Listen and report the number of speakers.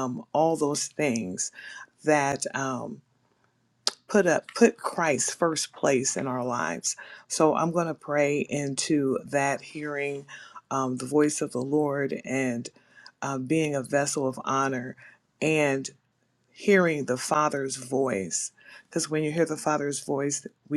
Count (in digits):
1